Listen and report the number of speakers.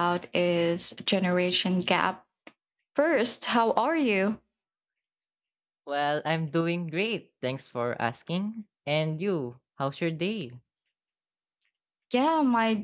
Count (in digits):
2